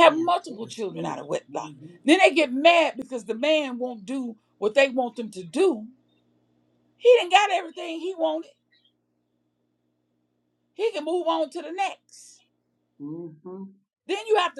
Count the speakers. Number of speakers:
2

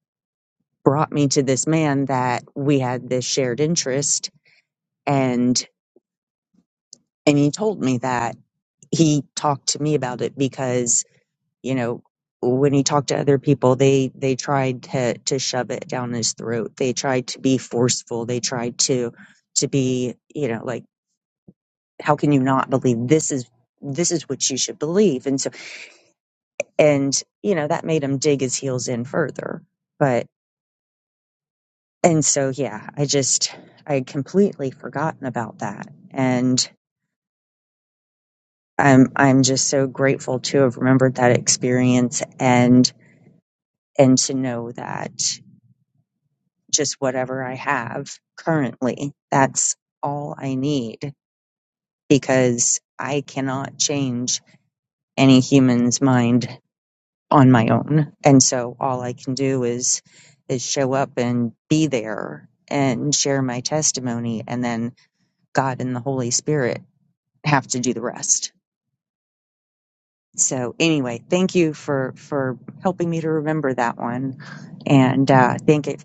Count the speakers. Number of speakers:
1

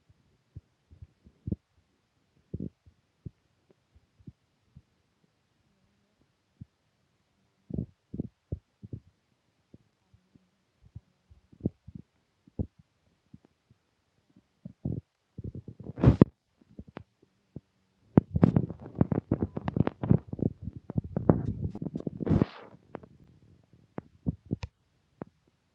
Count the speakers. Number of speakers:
0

